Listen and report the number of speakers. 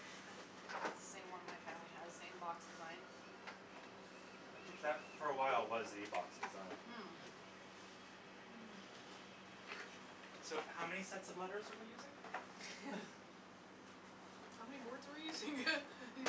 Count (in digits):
3